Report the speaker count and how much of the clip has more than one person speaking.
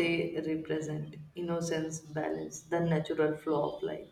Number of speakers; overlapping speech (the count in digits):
1, no overlap